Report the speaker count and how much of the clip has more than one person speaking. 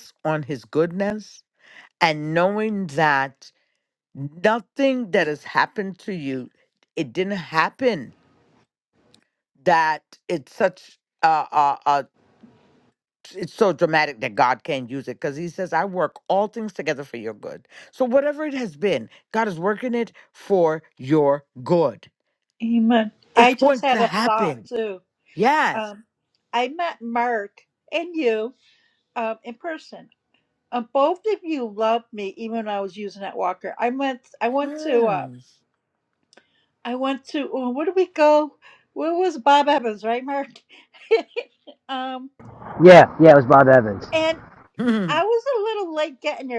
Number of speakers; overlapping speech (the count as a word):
three, about 4%